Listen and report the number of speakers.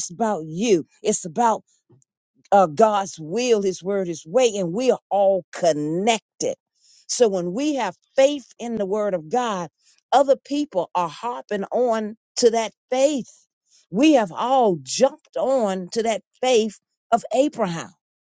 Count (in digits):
1